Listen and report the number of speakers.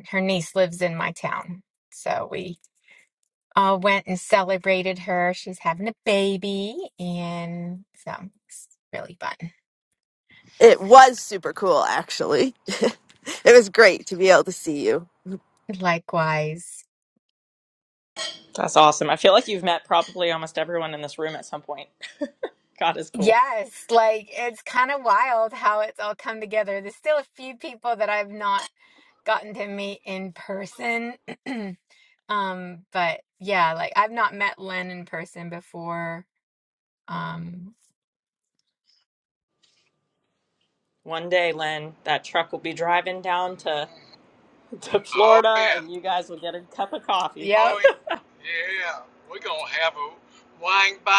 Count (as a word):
four